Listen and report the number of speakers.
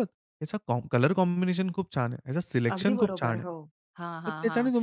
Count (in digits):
2